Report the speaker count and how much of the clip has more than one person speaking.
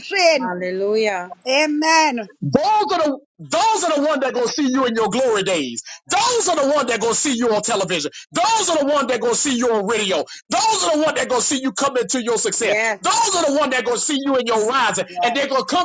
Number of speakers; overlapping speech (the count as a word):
three, about 5%